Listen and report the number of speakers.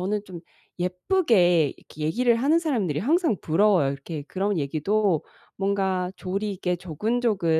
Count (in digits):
1